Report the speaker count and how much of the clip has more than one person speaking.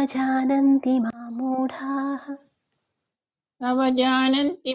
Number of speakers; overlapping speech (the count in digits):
2, no overlap